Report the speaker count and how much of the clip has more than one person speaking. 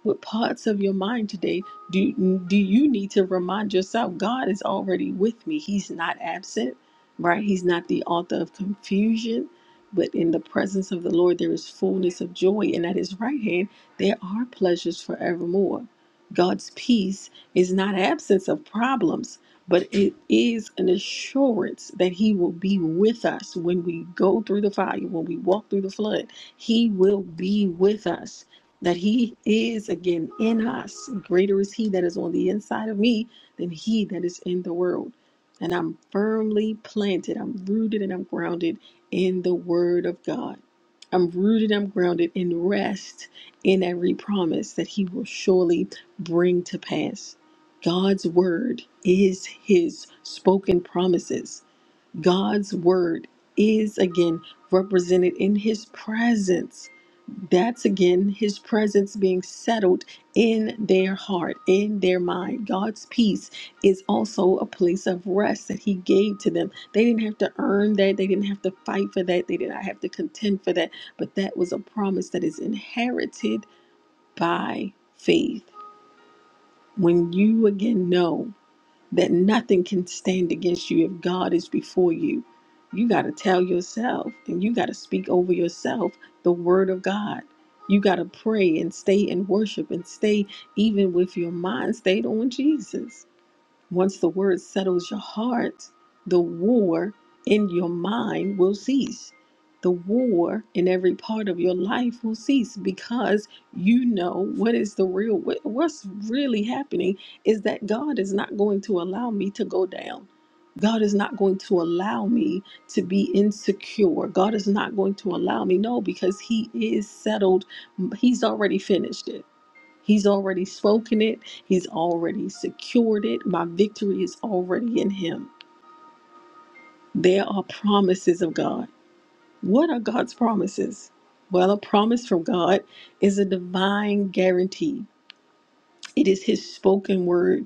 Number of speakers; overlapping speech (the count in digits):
1, no overlap